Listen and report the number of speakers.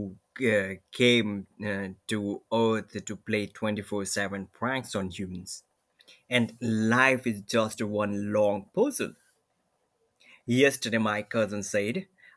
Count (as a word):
one